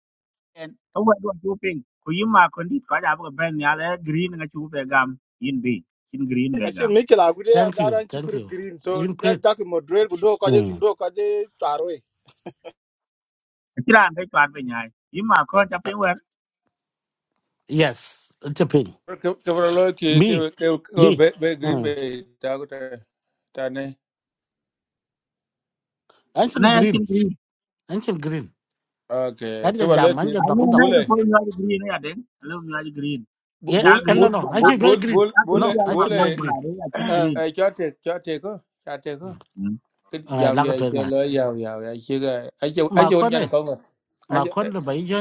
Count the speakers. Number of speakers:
four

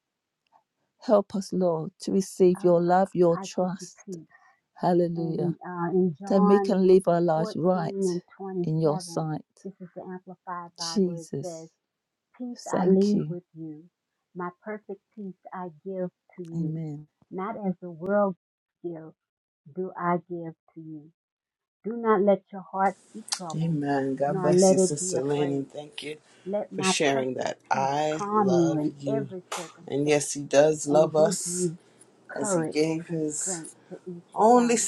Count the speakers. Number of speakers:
three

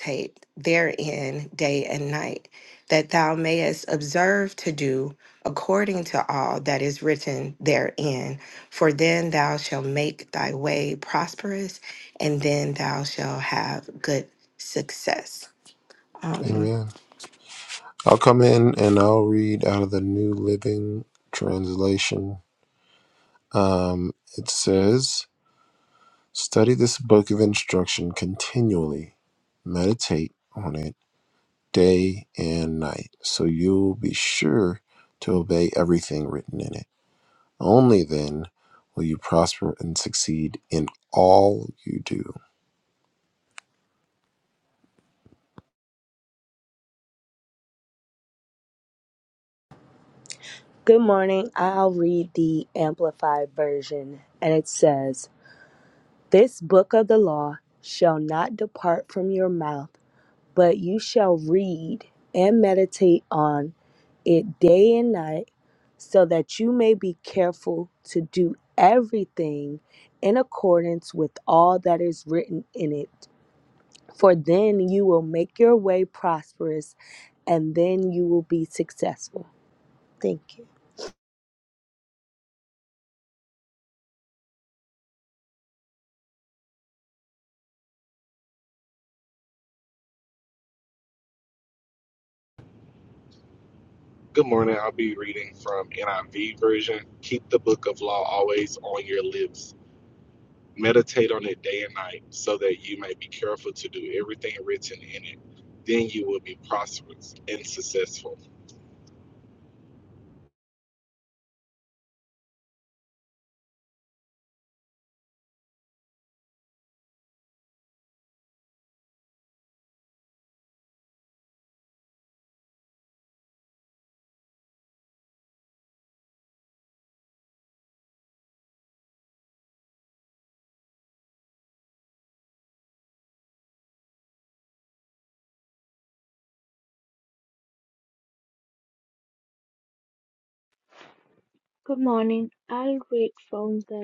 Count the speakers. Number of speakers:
five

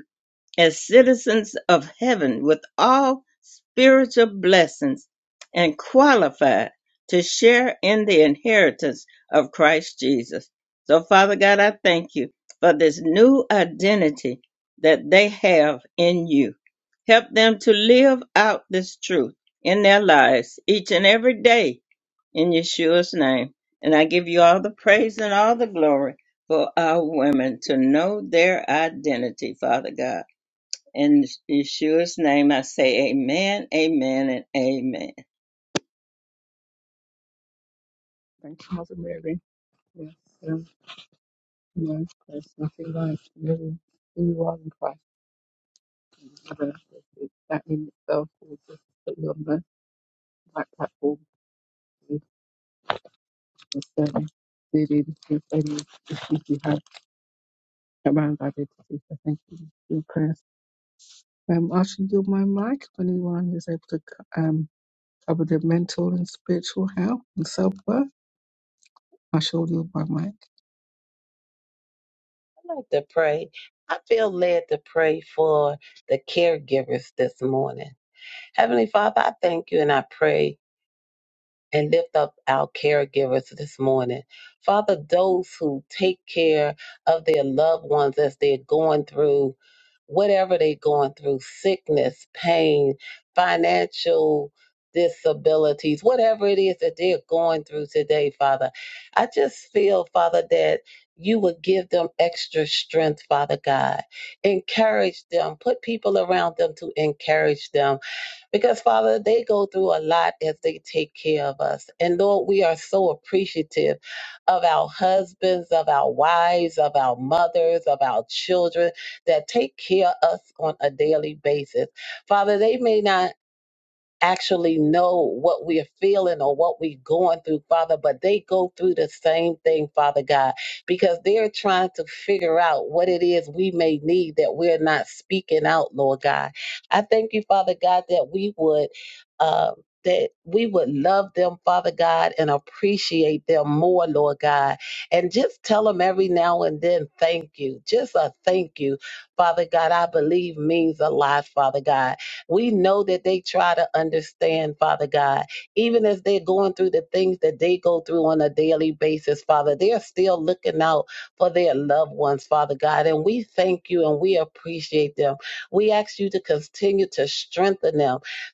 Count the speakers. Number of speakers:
three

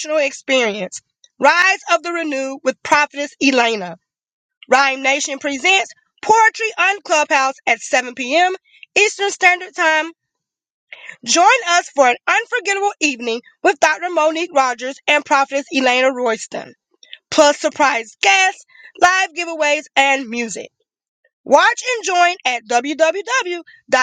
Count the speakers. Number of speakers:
one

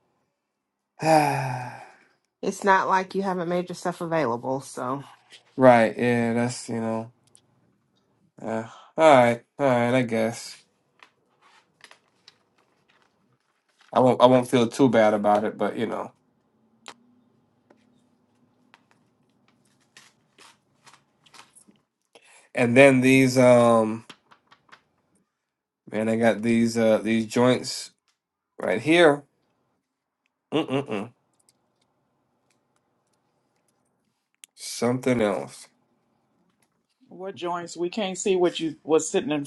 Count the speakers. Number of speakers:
three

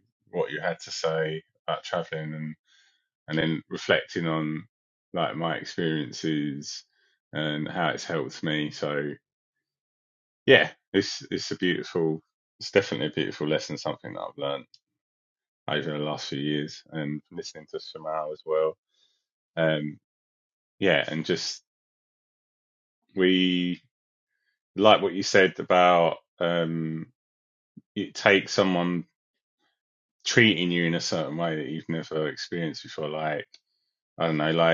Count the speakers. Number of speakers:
one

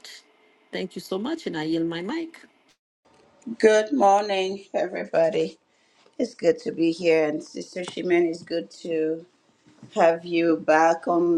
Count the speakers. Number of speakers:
two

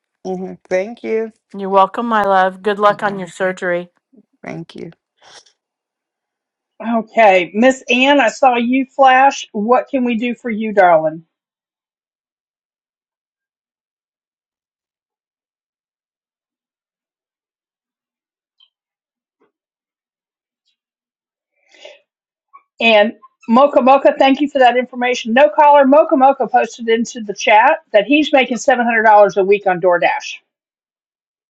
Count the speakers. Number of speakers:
three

